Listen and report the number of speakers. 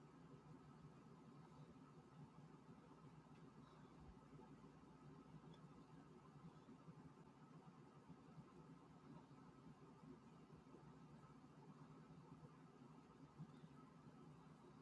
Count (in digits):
0